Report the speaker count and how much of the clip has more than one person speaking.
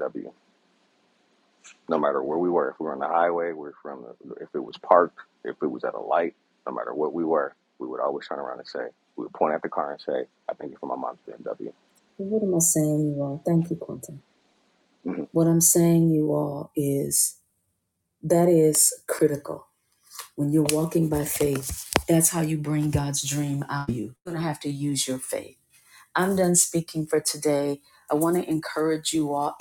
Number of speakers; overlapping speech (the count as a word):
two, no overlap